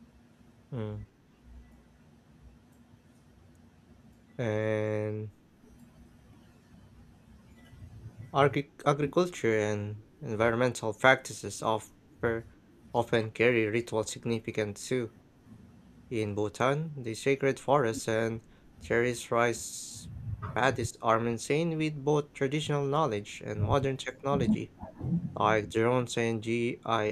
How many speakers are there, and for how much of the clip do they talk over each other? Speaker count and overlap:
one, no overlap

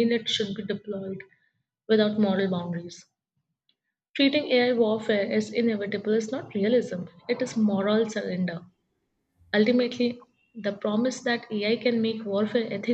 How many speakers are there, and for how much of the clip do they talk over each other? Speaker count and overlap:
one, no overlap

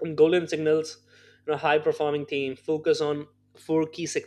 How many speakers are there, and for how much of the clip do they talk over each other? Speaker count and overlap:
one, no overlap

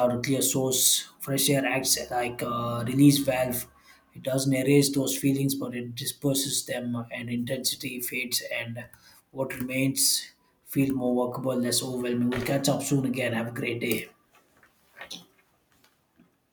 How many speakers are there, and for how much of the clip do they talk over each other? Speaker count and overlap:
one, no overlap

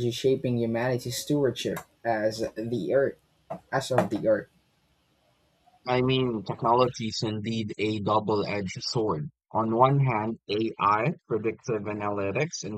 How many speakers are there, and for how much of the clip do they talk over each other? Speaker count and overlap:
two, no overlap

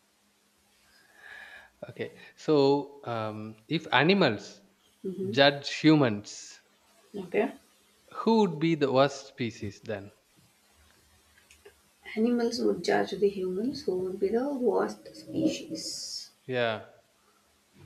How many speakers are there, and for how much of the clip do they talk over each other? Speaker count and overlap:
two, about 1%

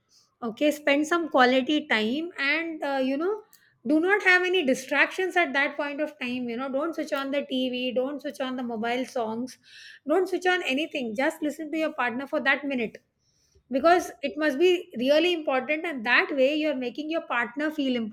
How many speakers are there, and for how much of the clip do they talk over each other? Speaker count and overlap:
one, no overlap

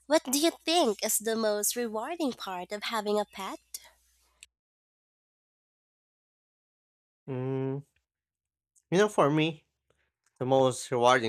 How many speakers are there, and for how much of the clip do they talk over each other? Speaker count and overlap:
two, no overlap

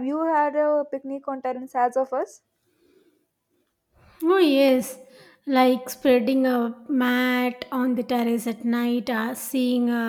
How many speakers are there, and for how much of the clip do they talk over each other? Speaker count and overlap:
two, no overlap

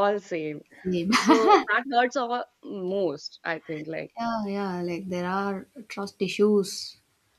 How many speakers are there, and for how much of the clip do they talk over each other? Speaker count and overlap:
two, no overlap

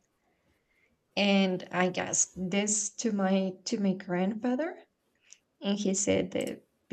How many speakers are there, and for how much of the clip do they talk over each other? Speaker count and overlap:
one, no overlap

